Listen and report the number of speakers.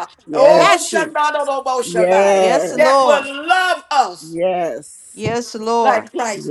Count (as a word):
three